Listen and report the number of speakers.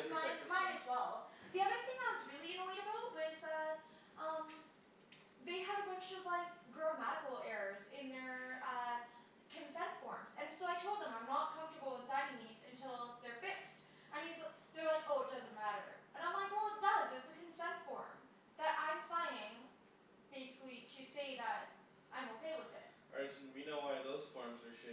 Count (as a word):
two